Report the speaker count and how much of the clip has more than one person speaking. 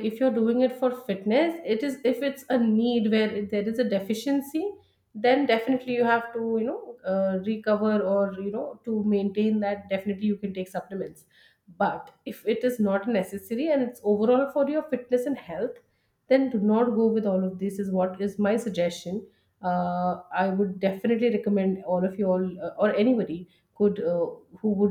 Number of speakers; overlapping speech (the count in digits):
1, no overlap